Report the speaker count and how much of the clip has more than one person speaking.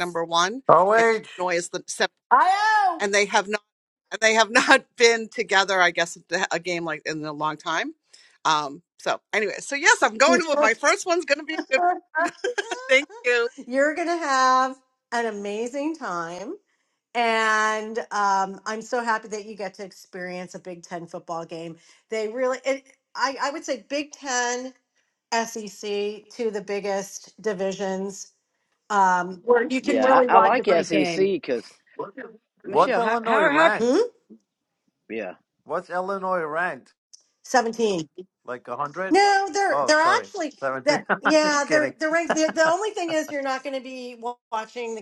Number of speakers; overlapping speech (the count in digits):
4, about 9%